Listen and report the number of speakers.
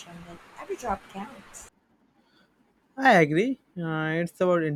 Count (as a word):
two